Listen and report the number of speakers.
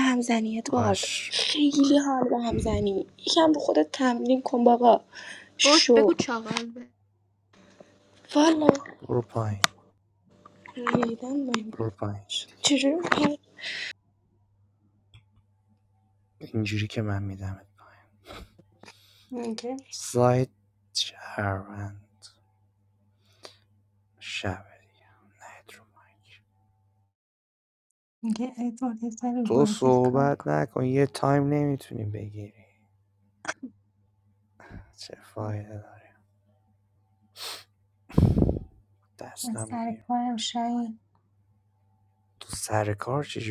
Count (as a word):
four